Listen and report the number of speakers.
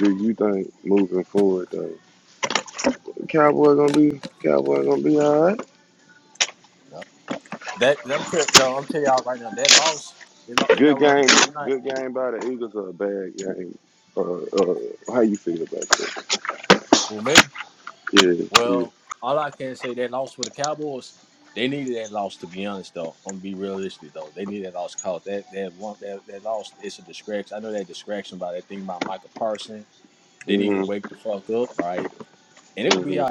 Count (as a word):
two